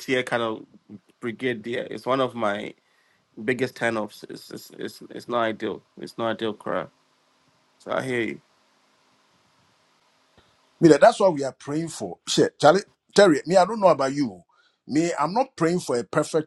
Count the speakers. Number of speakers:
2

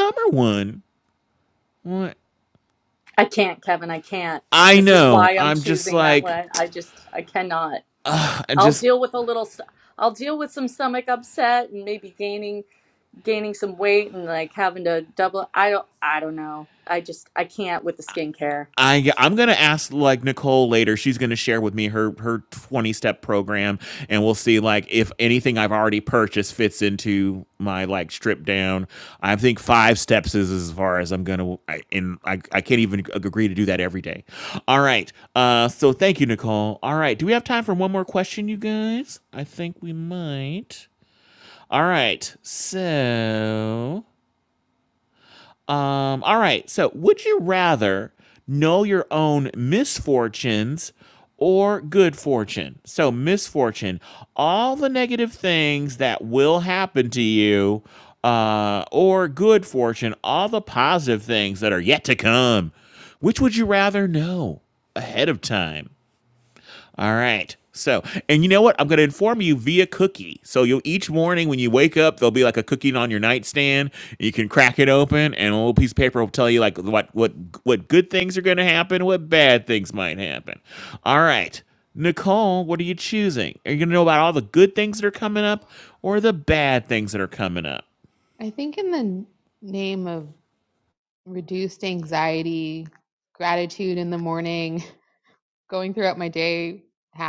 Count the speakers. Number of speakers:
3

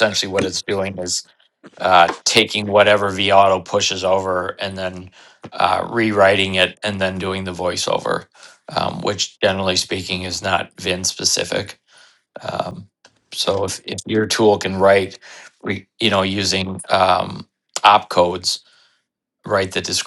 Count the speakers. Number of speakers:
1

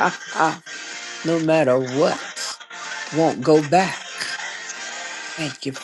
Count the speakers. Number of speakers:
1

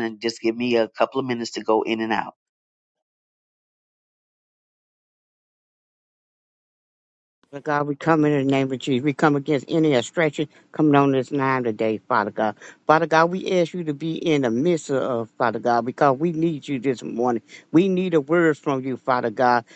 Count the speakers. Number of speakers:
2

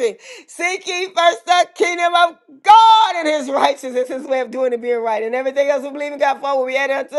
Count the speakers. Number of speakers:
1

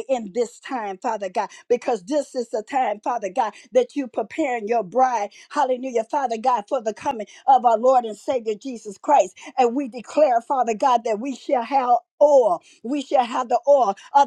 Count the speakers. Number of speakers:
1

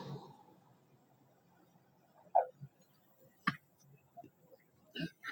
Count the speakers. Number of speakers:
0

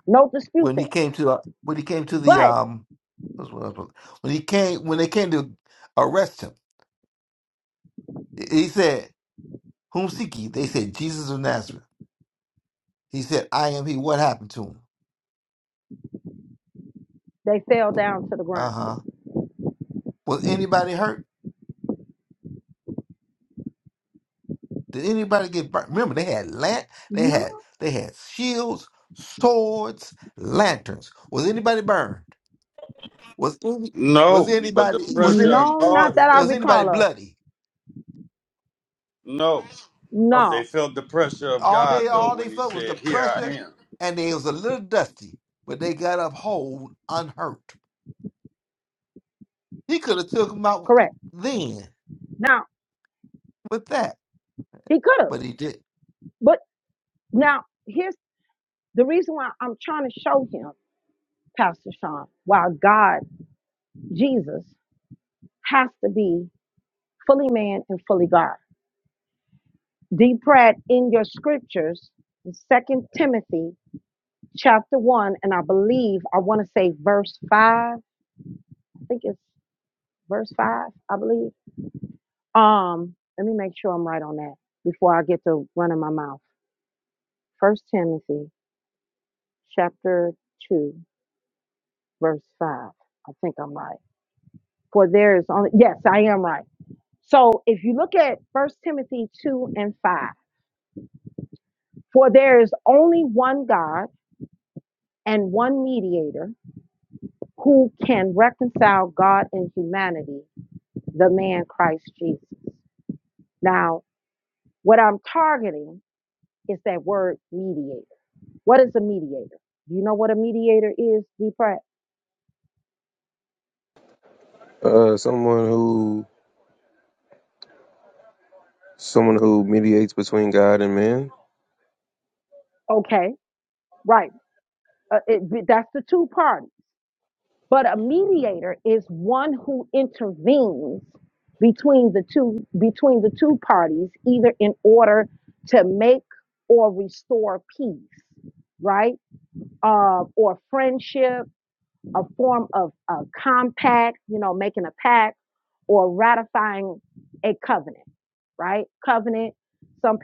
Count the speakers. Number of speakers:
4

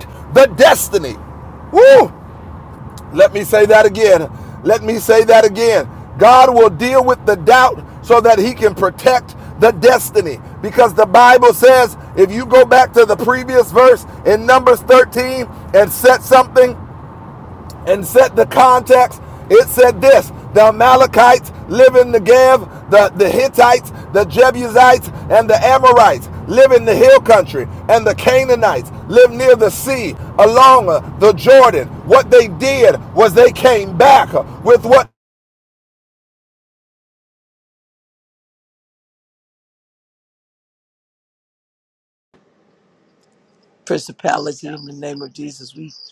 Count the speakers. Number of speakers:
2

